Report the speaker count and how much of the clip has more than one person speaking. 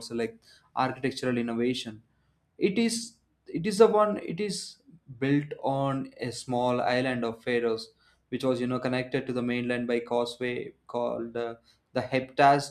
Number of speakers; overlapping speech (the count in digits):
1, no overlap